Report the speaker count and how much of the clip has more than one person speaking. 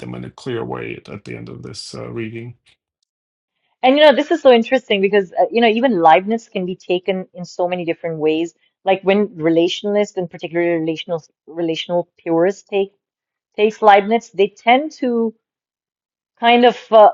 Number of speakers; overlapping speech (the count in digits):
2, no overlap